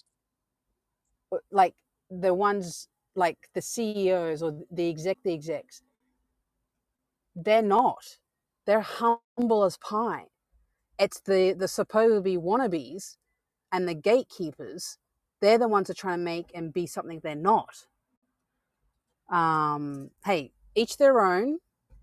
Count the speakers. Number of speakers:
1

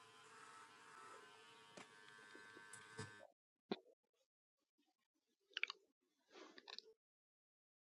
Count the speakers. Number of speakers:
0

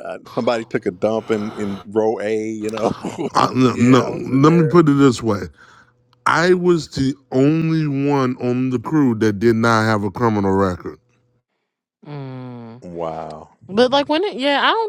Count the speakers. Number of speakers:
3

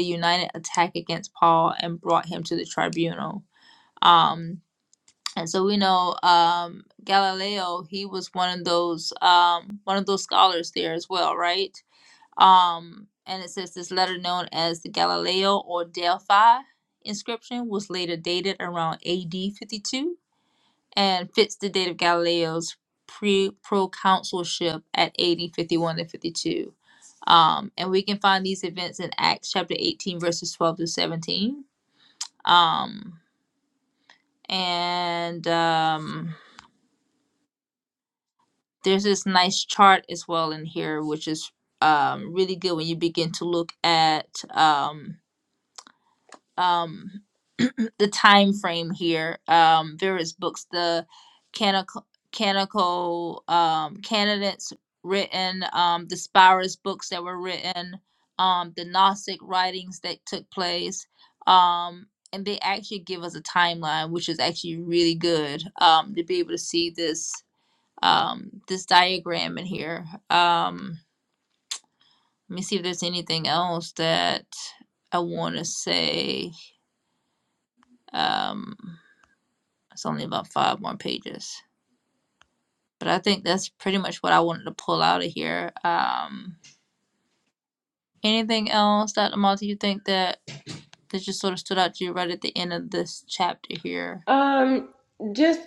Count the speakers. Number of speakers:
2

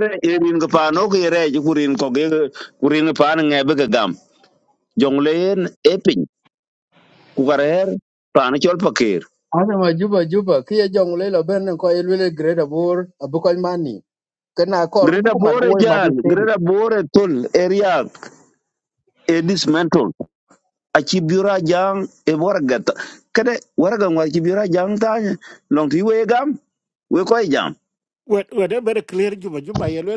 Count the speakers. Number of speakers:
3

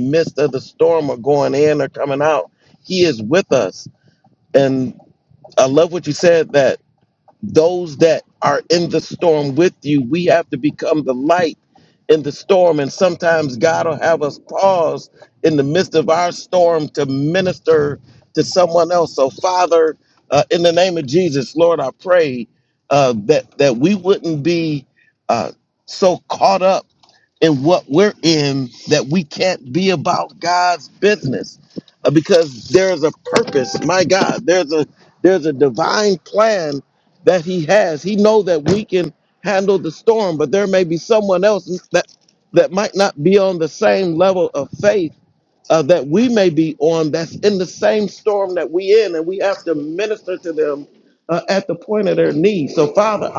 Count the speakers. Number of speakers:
1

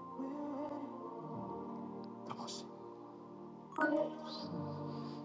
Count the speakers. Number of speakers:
0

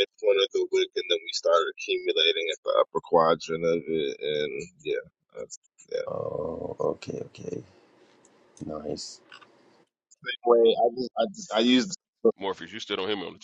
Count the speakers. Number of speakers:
3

